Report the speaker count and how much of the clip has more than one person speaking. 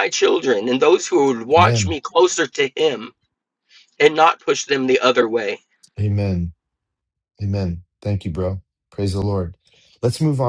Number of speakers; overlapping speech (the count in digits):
2, about 4%